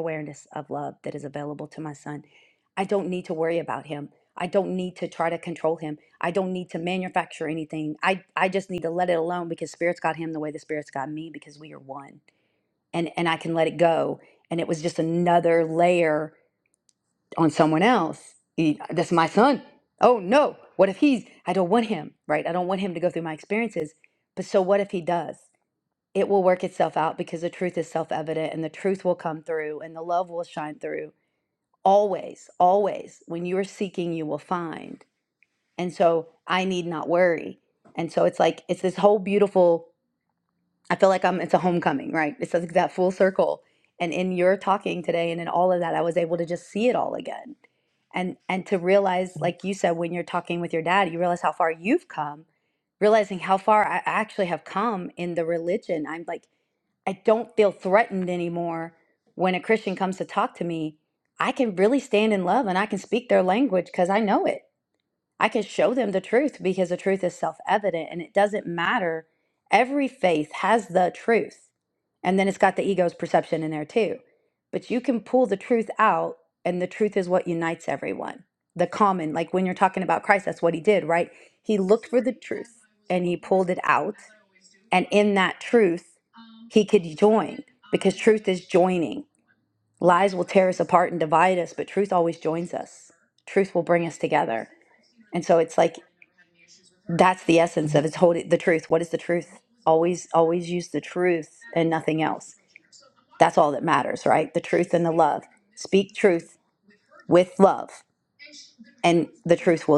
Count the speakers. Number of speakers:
one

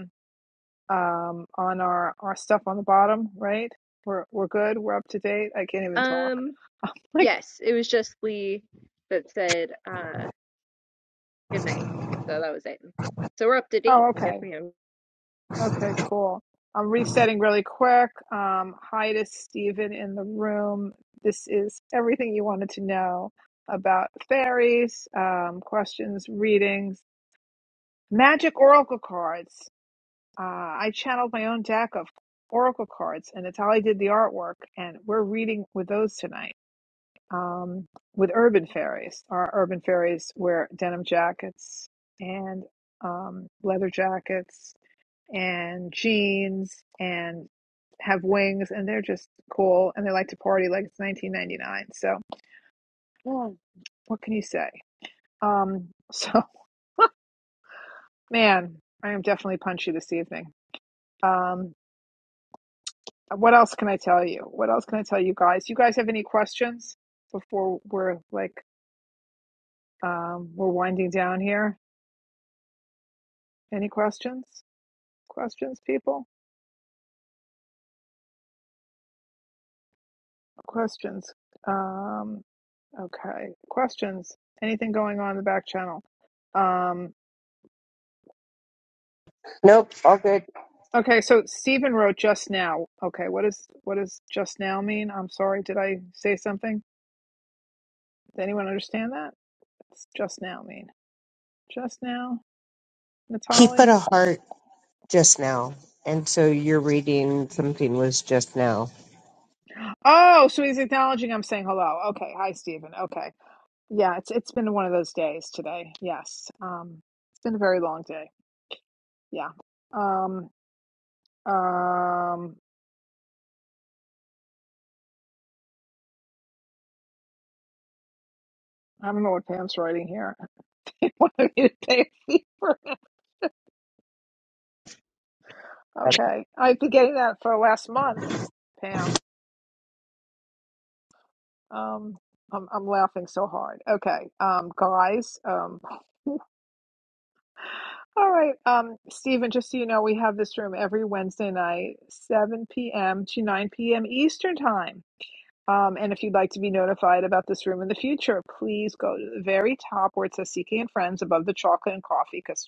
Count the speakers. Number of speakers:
three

